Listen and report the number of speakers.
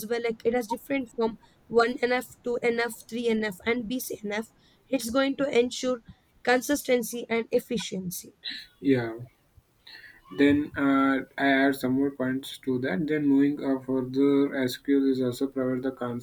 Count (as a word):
two